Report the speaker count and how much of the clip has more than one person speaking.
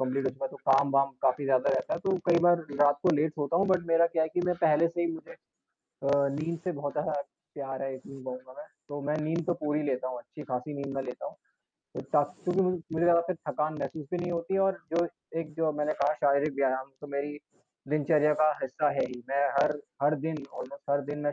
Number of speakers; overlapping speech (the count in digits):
1, no overlap